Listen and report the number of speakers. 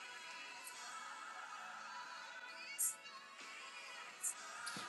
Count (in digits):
0